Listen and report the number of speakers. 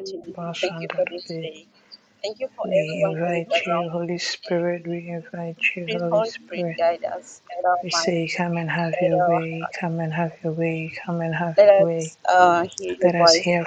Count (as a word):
two